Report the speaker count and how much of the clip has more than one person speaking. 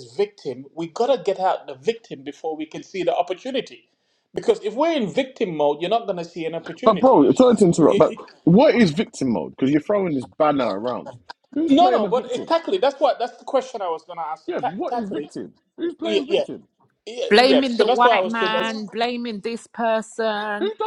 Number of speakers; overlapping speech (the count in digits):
3, about 21%